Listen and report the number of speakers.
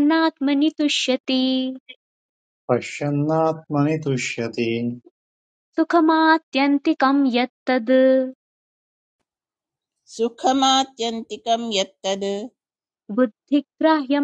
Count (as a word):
three